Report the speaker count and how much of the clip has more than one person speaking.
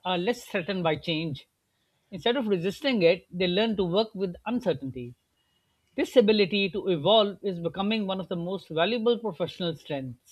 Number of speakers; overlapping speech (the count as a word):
one, no overlap